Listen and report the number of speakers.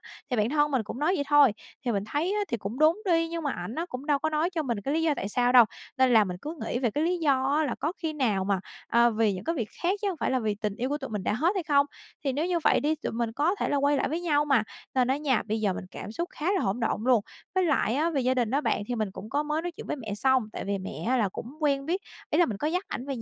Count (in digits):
1